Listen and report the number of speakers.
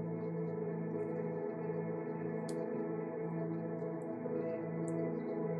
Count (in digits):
0